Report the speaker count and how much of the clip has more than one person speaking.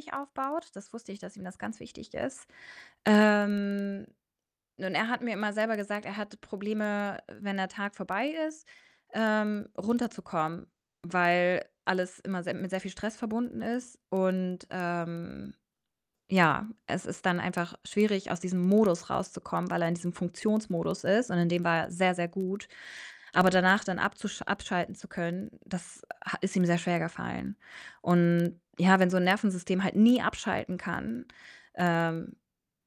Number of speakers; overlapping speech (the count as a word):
one, no overlap